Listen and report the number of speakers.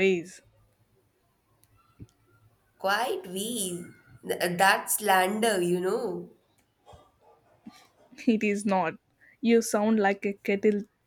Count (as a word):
two